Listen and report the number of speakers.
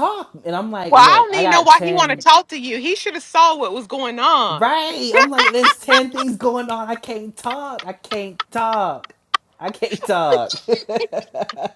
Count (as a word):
two